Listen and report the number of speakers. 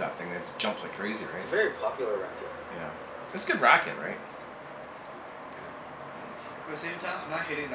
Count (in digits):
3